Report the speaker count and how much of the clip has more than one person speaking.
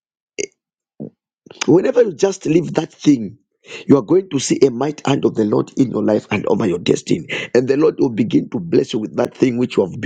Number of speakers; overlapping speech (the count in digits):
1, no overlap